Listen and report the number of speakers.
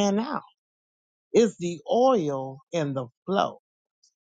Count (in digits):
1